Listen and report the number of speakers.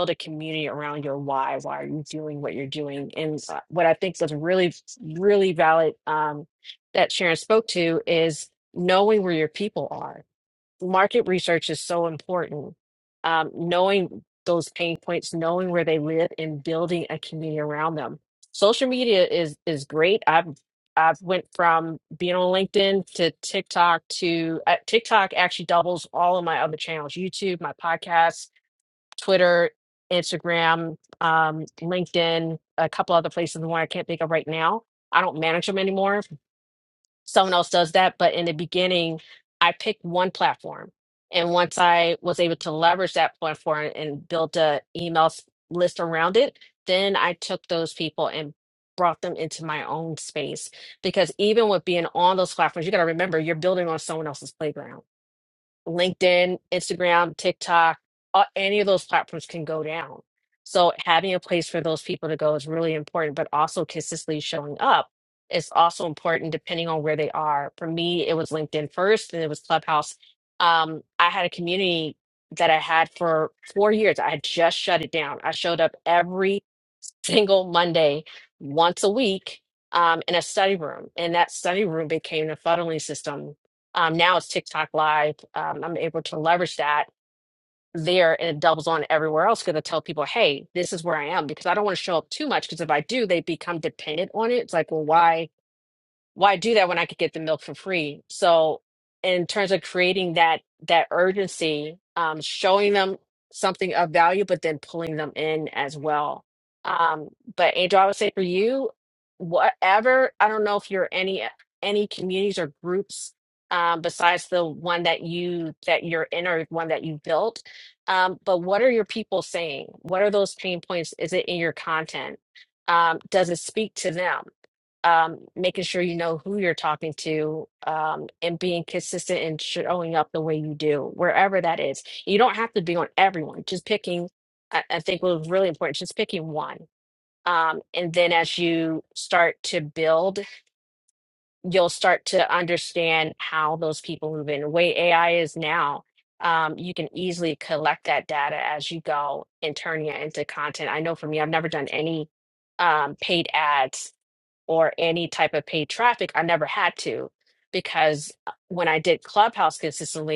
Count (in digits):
1